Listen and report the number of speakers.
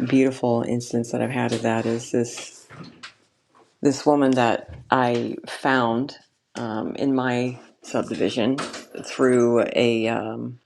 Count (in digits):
1